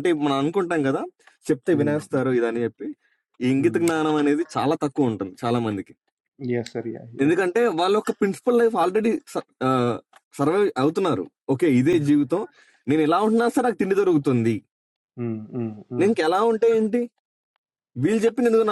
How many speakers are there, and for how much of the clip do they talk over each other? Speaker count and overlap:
2, about 4%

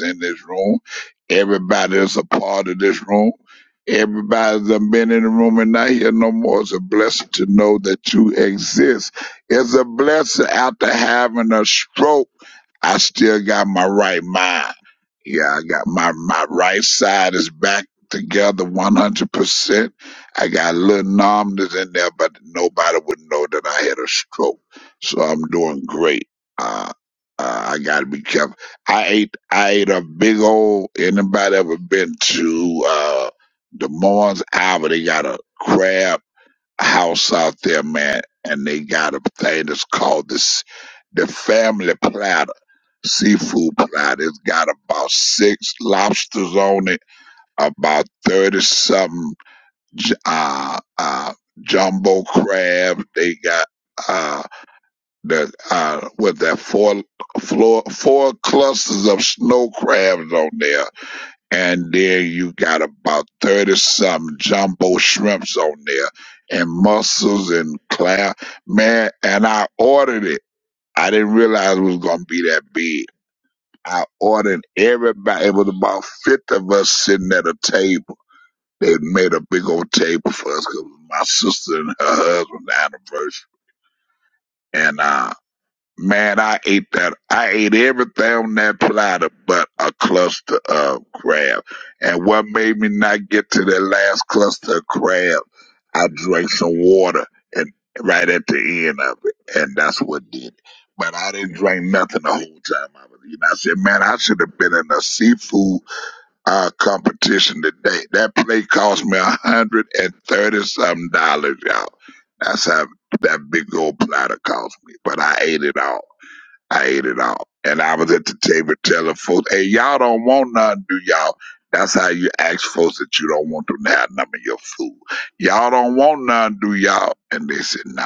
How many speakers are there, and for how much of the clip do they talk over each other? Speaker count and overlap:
1, no overlap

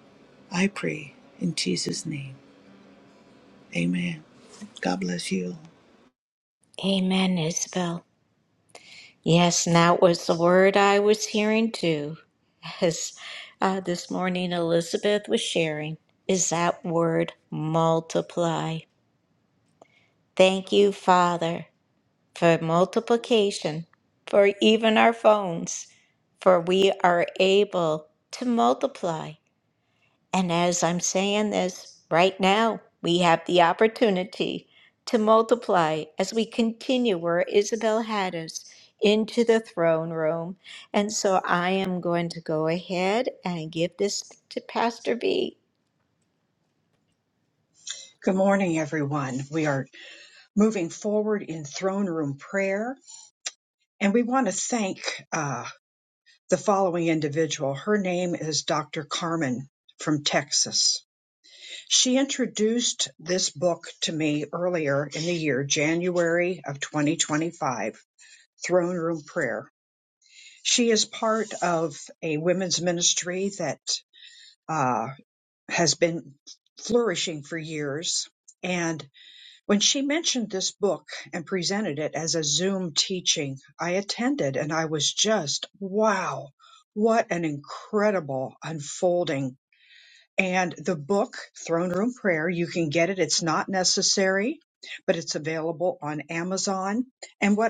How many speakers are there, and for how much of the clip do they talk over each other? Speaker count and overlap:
3, no overlap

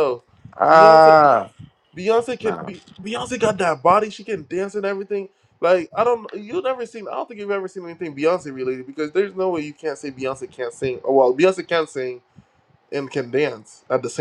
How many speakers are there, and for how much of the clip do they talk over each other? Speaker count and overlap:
2, about 5%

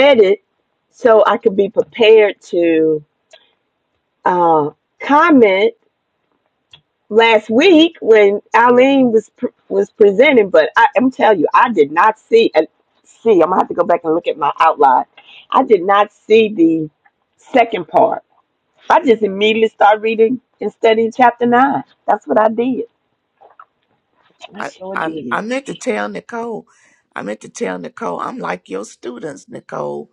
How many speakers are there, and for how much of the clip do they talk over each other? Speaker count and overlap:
2, about 3%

